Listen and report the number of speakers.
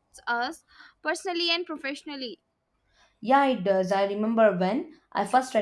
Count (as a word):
two